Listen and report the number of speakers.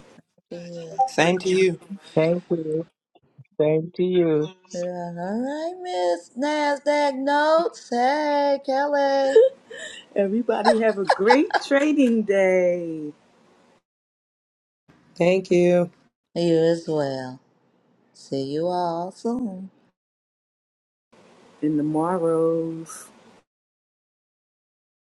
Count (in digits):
4